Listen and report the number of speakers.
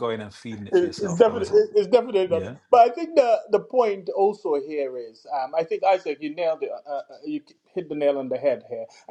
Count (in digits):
2